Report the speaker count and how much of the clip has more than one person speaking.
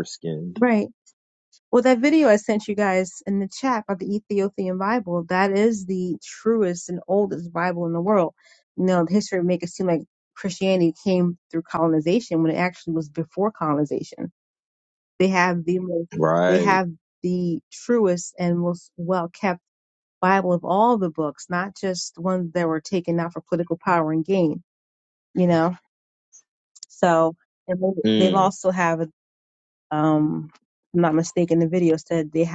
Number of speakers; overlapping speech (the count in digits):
2, about 2%